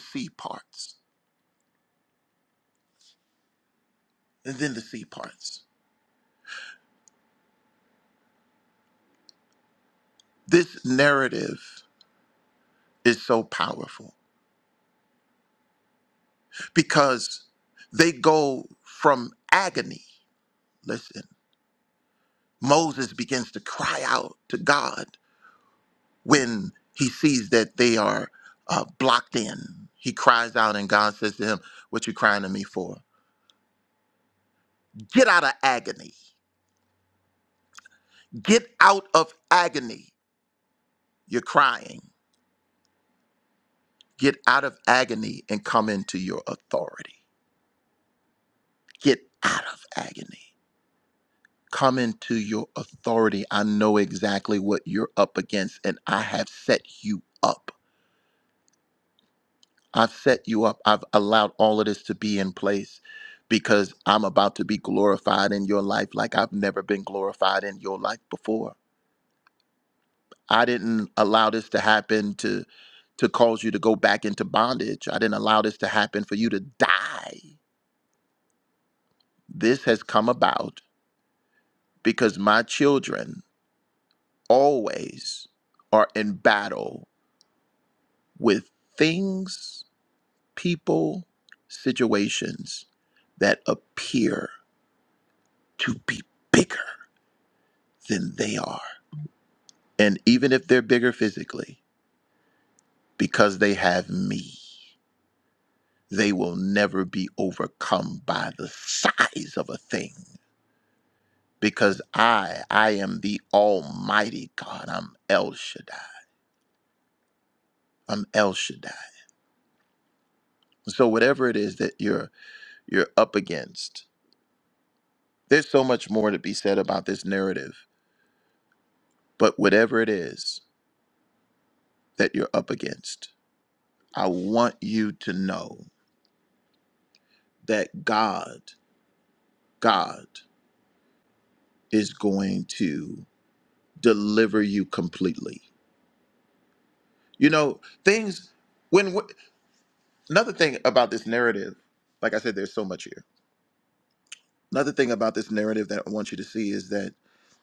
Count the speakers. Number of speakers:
one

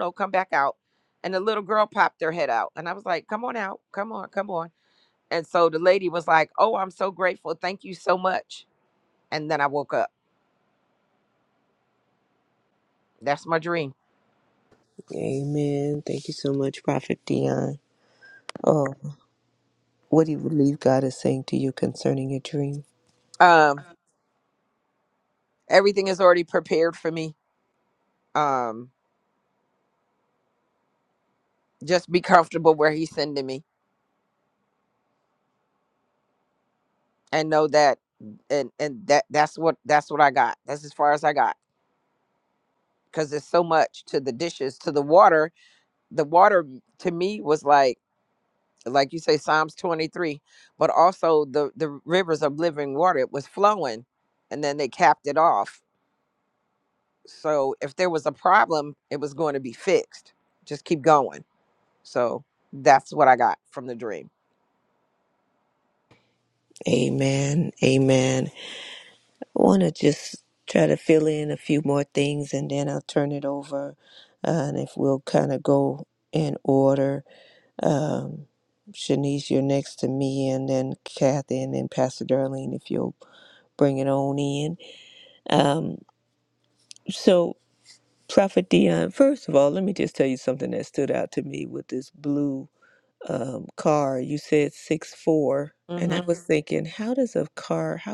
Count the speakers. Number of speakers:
two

